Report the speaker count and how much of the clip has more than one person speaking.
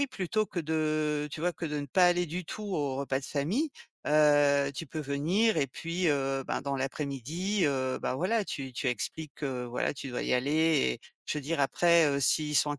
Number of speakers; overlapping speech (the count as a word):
one, no overlap